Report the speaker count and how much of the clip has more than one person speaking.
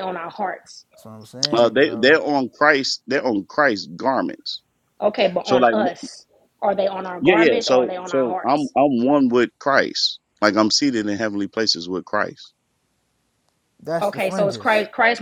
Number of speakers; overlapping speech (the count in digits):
3, about 19%